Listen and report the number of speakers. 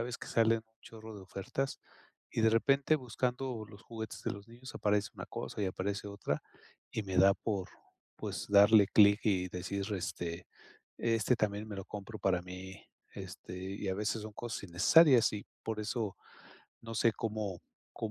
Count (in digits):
1